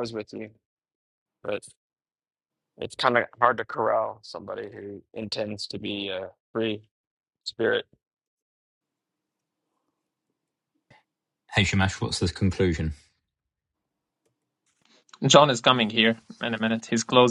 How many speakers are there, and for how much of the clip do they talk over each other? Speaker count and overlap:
three, no overlap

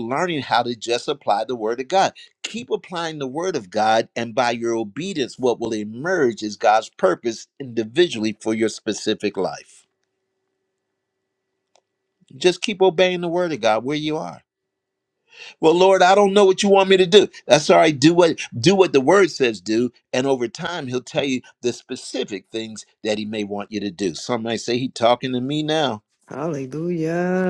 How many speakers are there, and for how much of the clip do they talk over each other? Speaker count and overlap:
two, no overlap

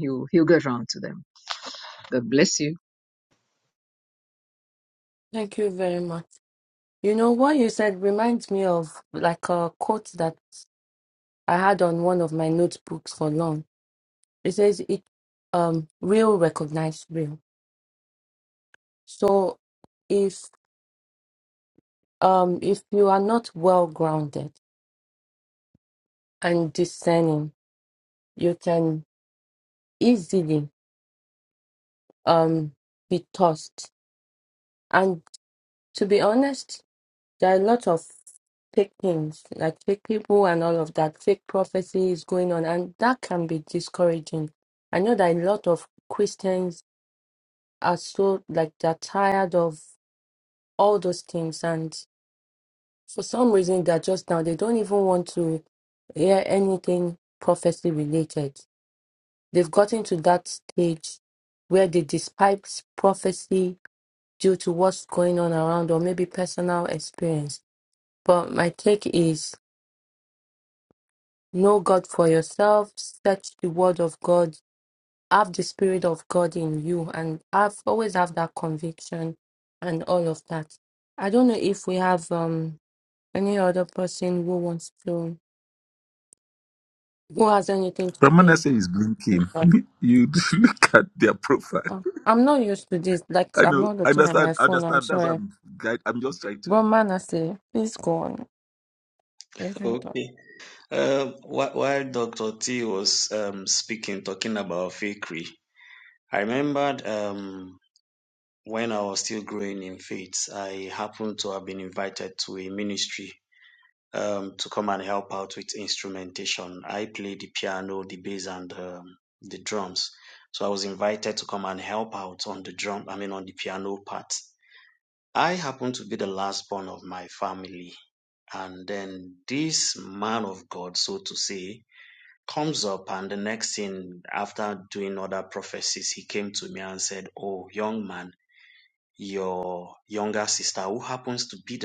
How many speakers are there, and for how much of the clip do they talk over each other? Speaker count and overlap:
four, about 2%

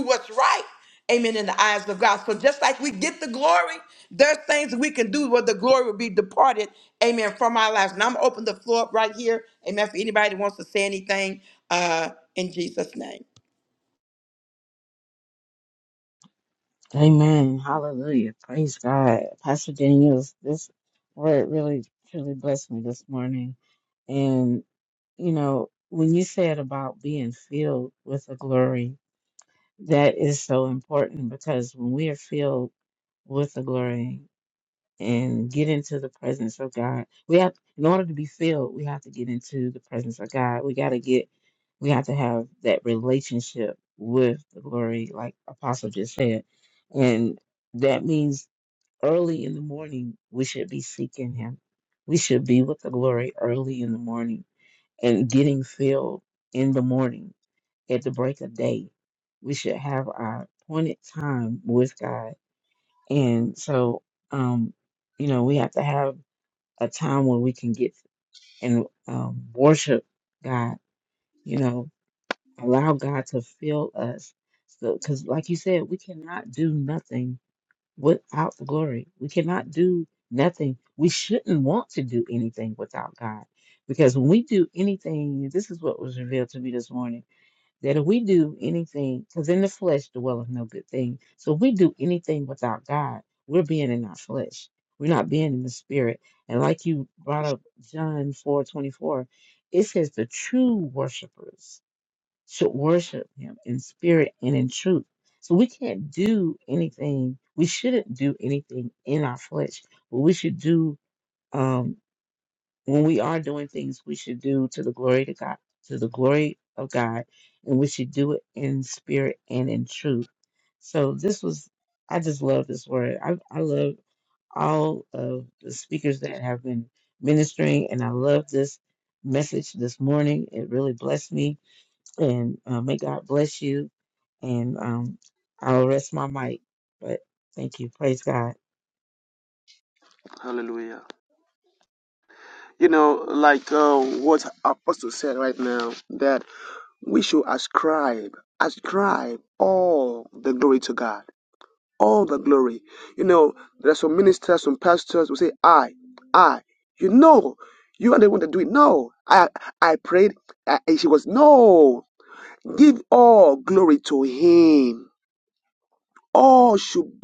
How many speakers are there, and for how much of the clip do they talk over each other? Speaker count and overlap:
three, no overlap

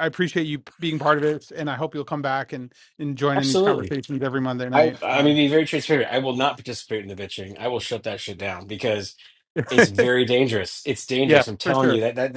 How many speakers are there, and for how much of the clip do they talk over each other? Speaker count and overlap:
two, about 16%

